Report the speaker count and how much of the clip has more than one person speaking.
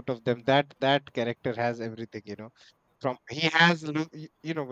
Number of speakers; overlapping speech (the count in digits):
1, no overlap